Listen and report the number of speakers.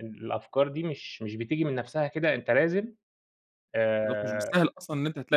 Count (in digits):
2